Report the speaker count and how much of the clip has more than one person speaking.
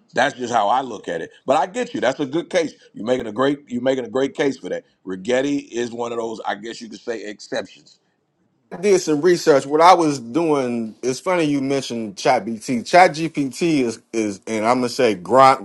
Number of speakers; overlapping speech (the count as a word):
two, no overlap